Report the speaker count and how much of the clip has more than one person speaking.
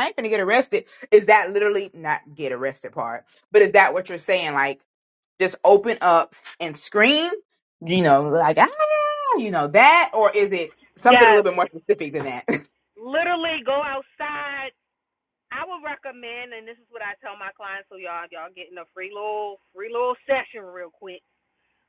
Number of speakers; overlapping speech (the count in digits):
2, about 2%